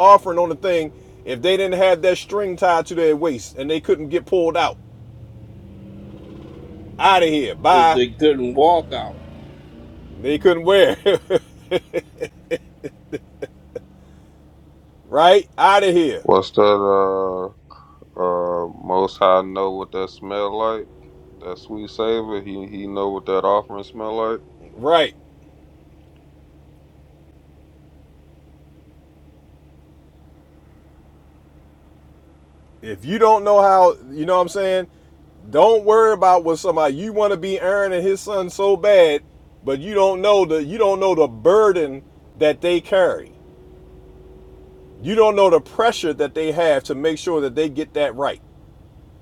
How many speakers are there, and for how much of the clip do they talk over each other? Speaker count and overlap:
three, about 1%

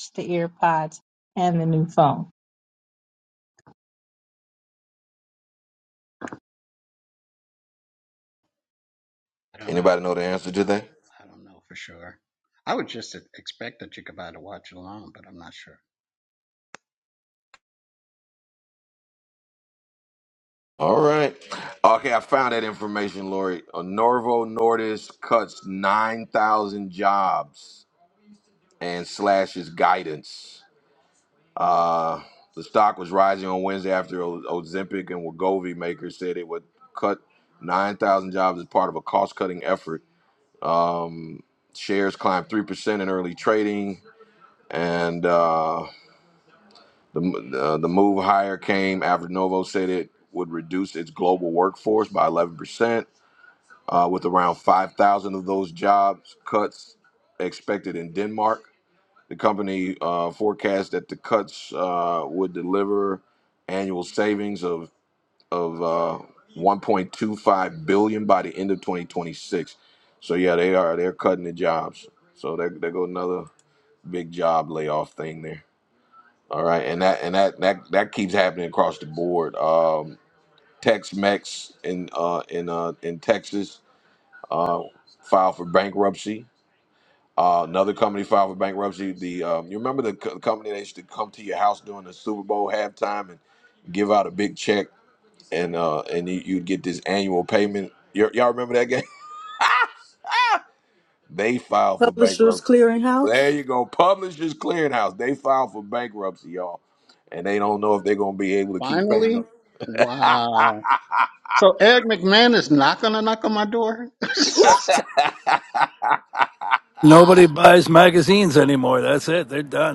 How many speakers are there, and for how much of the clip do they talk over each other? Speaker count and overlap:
five, about 1%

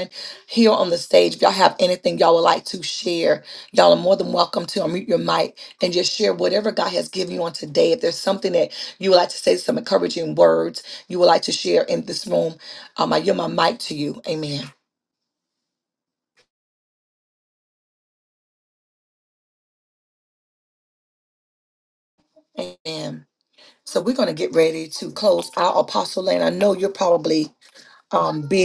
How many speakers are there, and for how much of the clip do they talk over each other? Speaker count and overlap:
one, no overlap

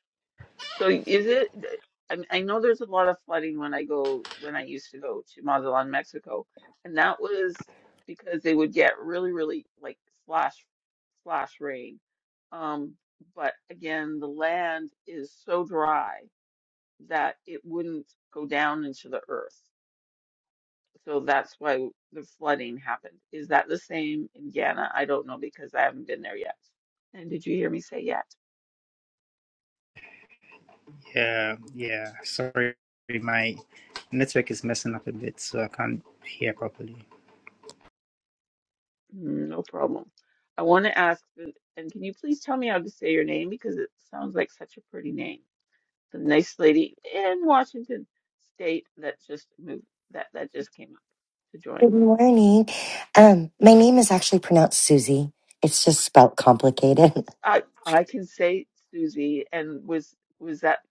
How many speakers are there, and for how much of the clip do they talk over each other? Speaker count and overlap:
three, under 1%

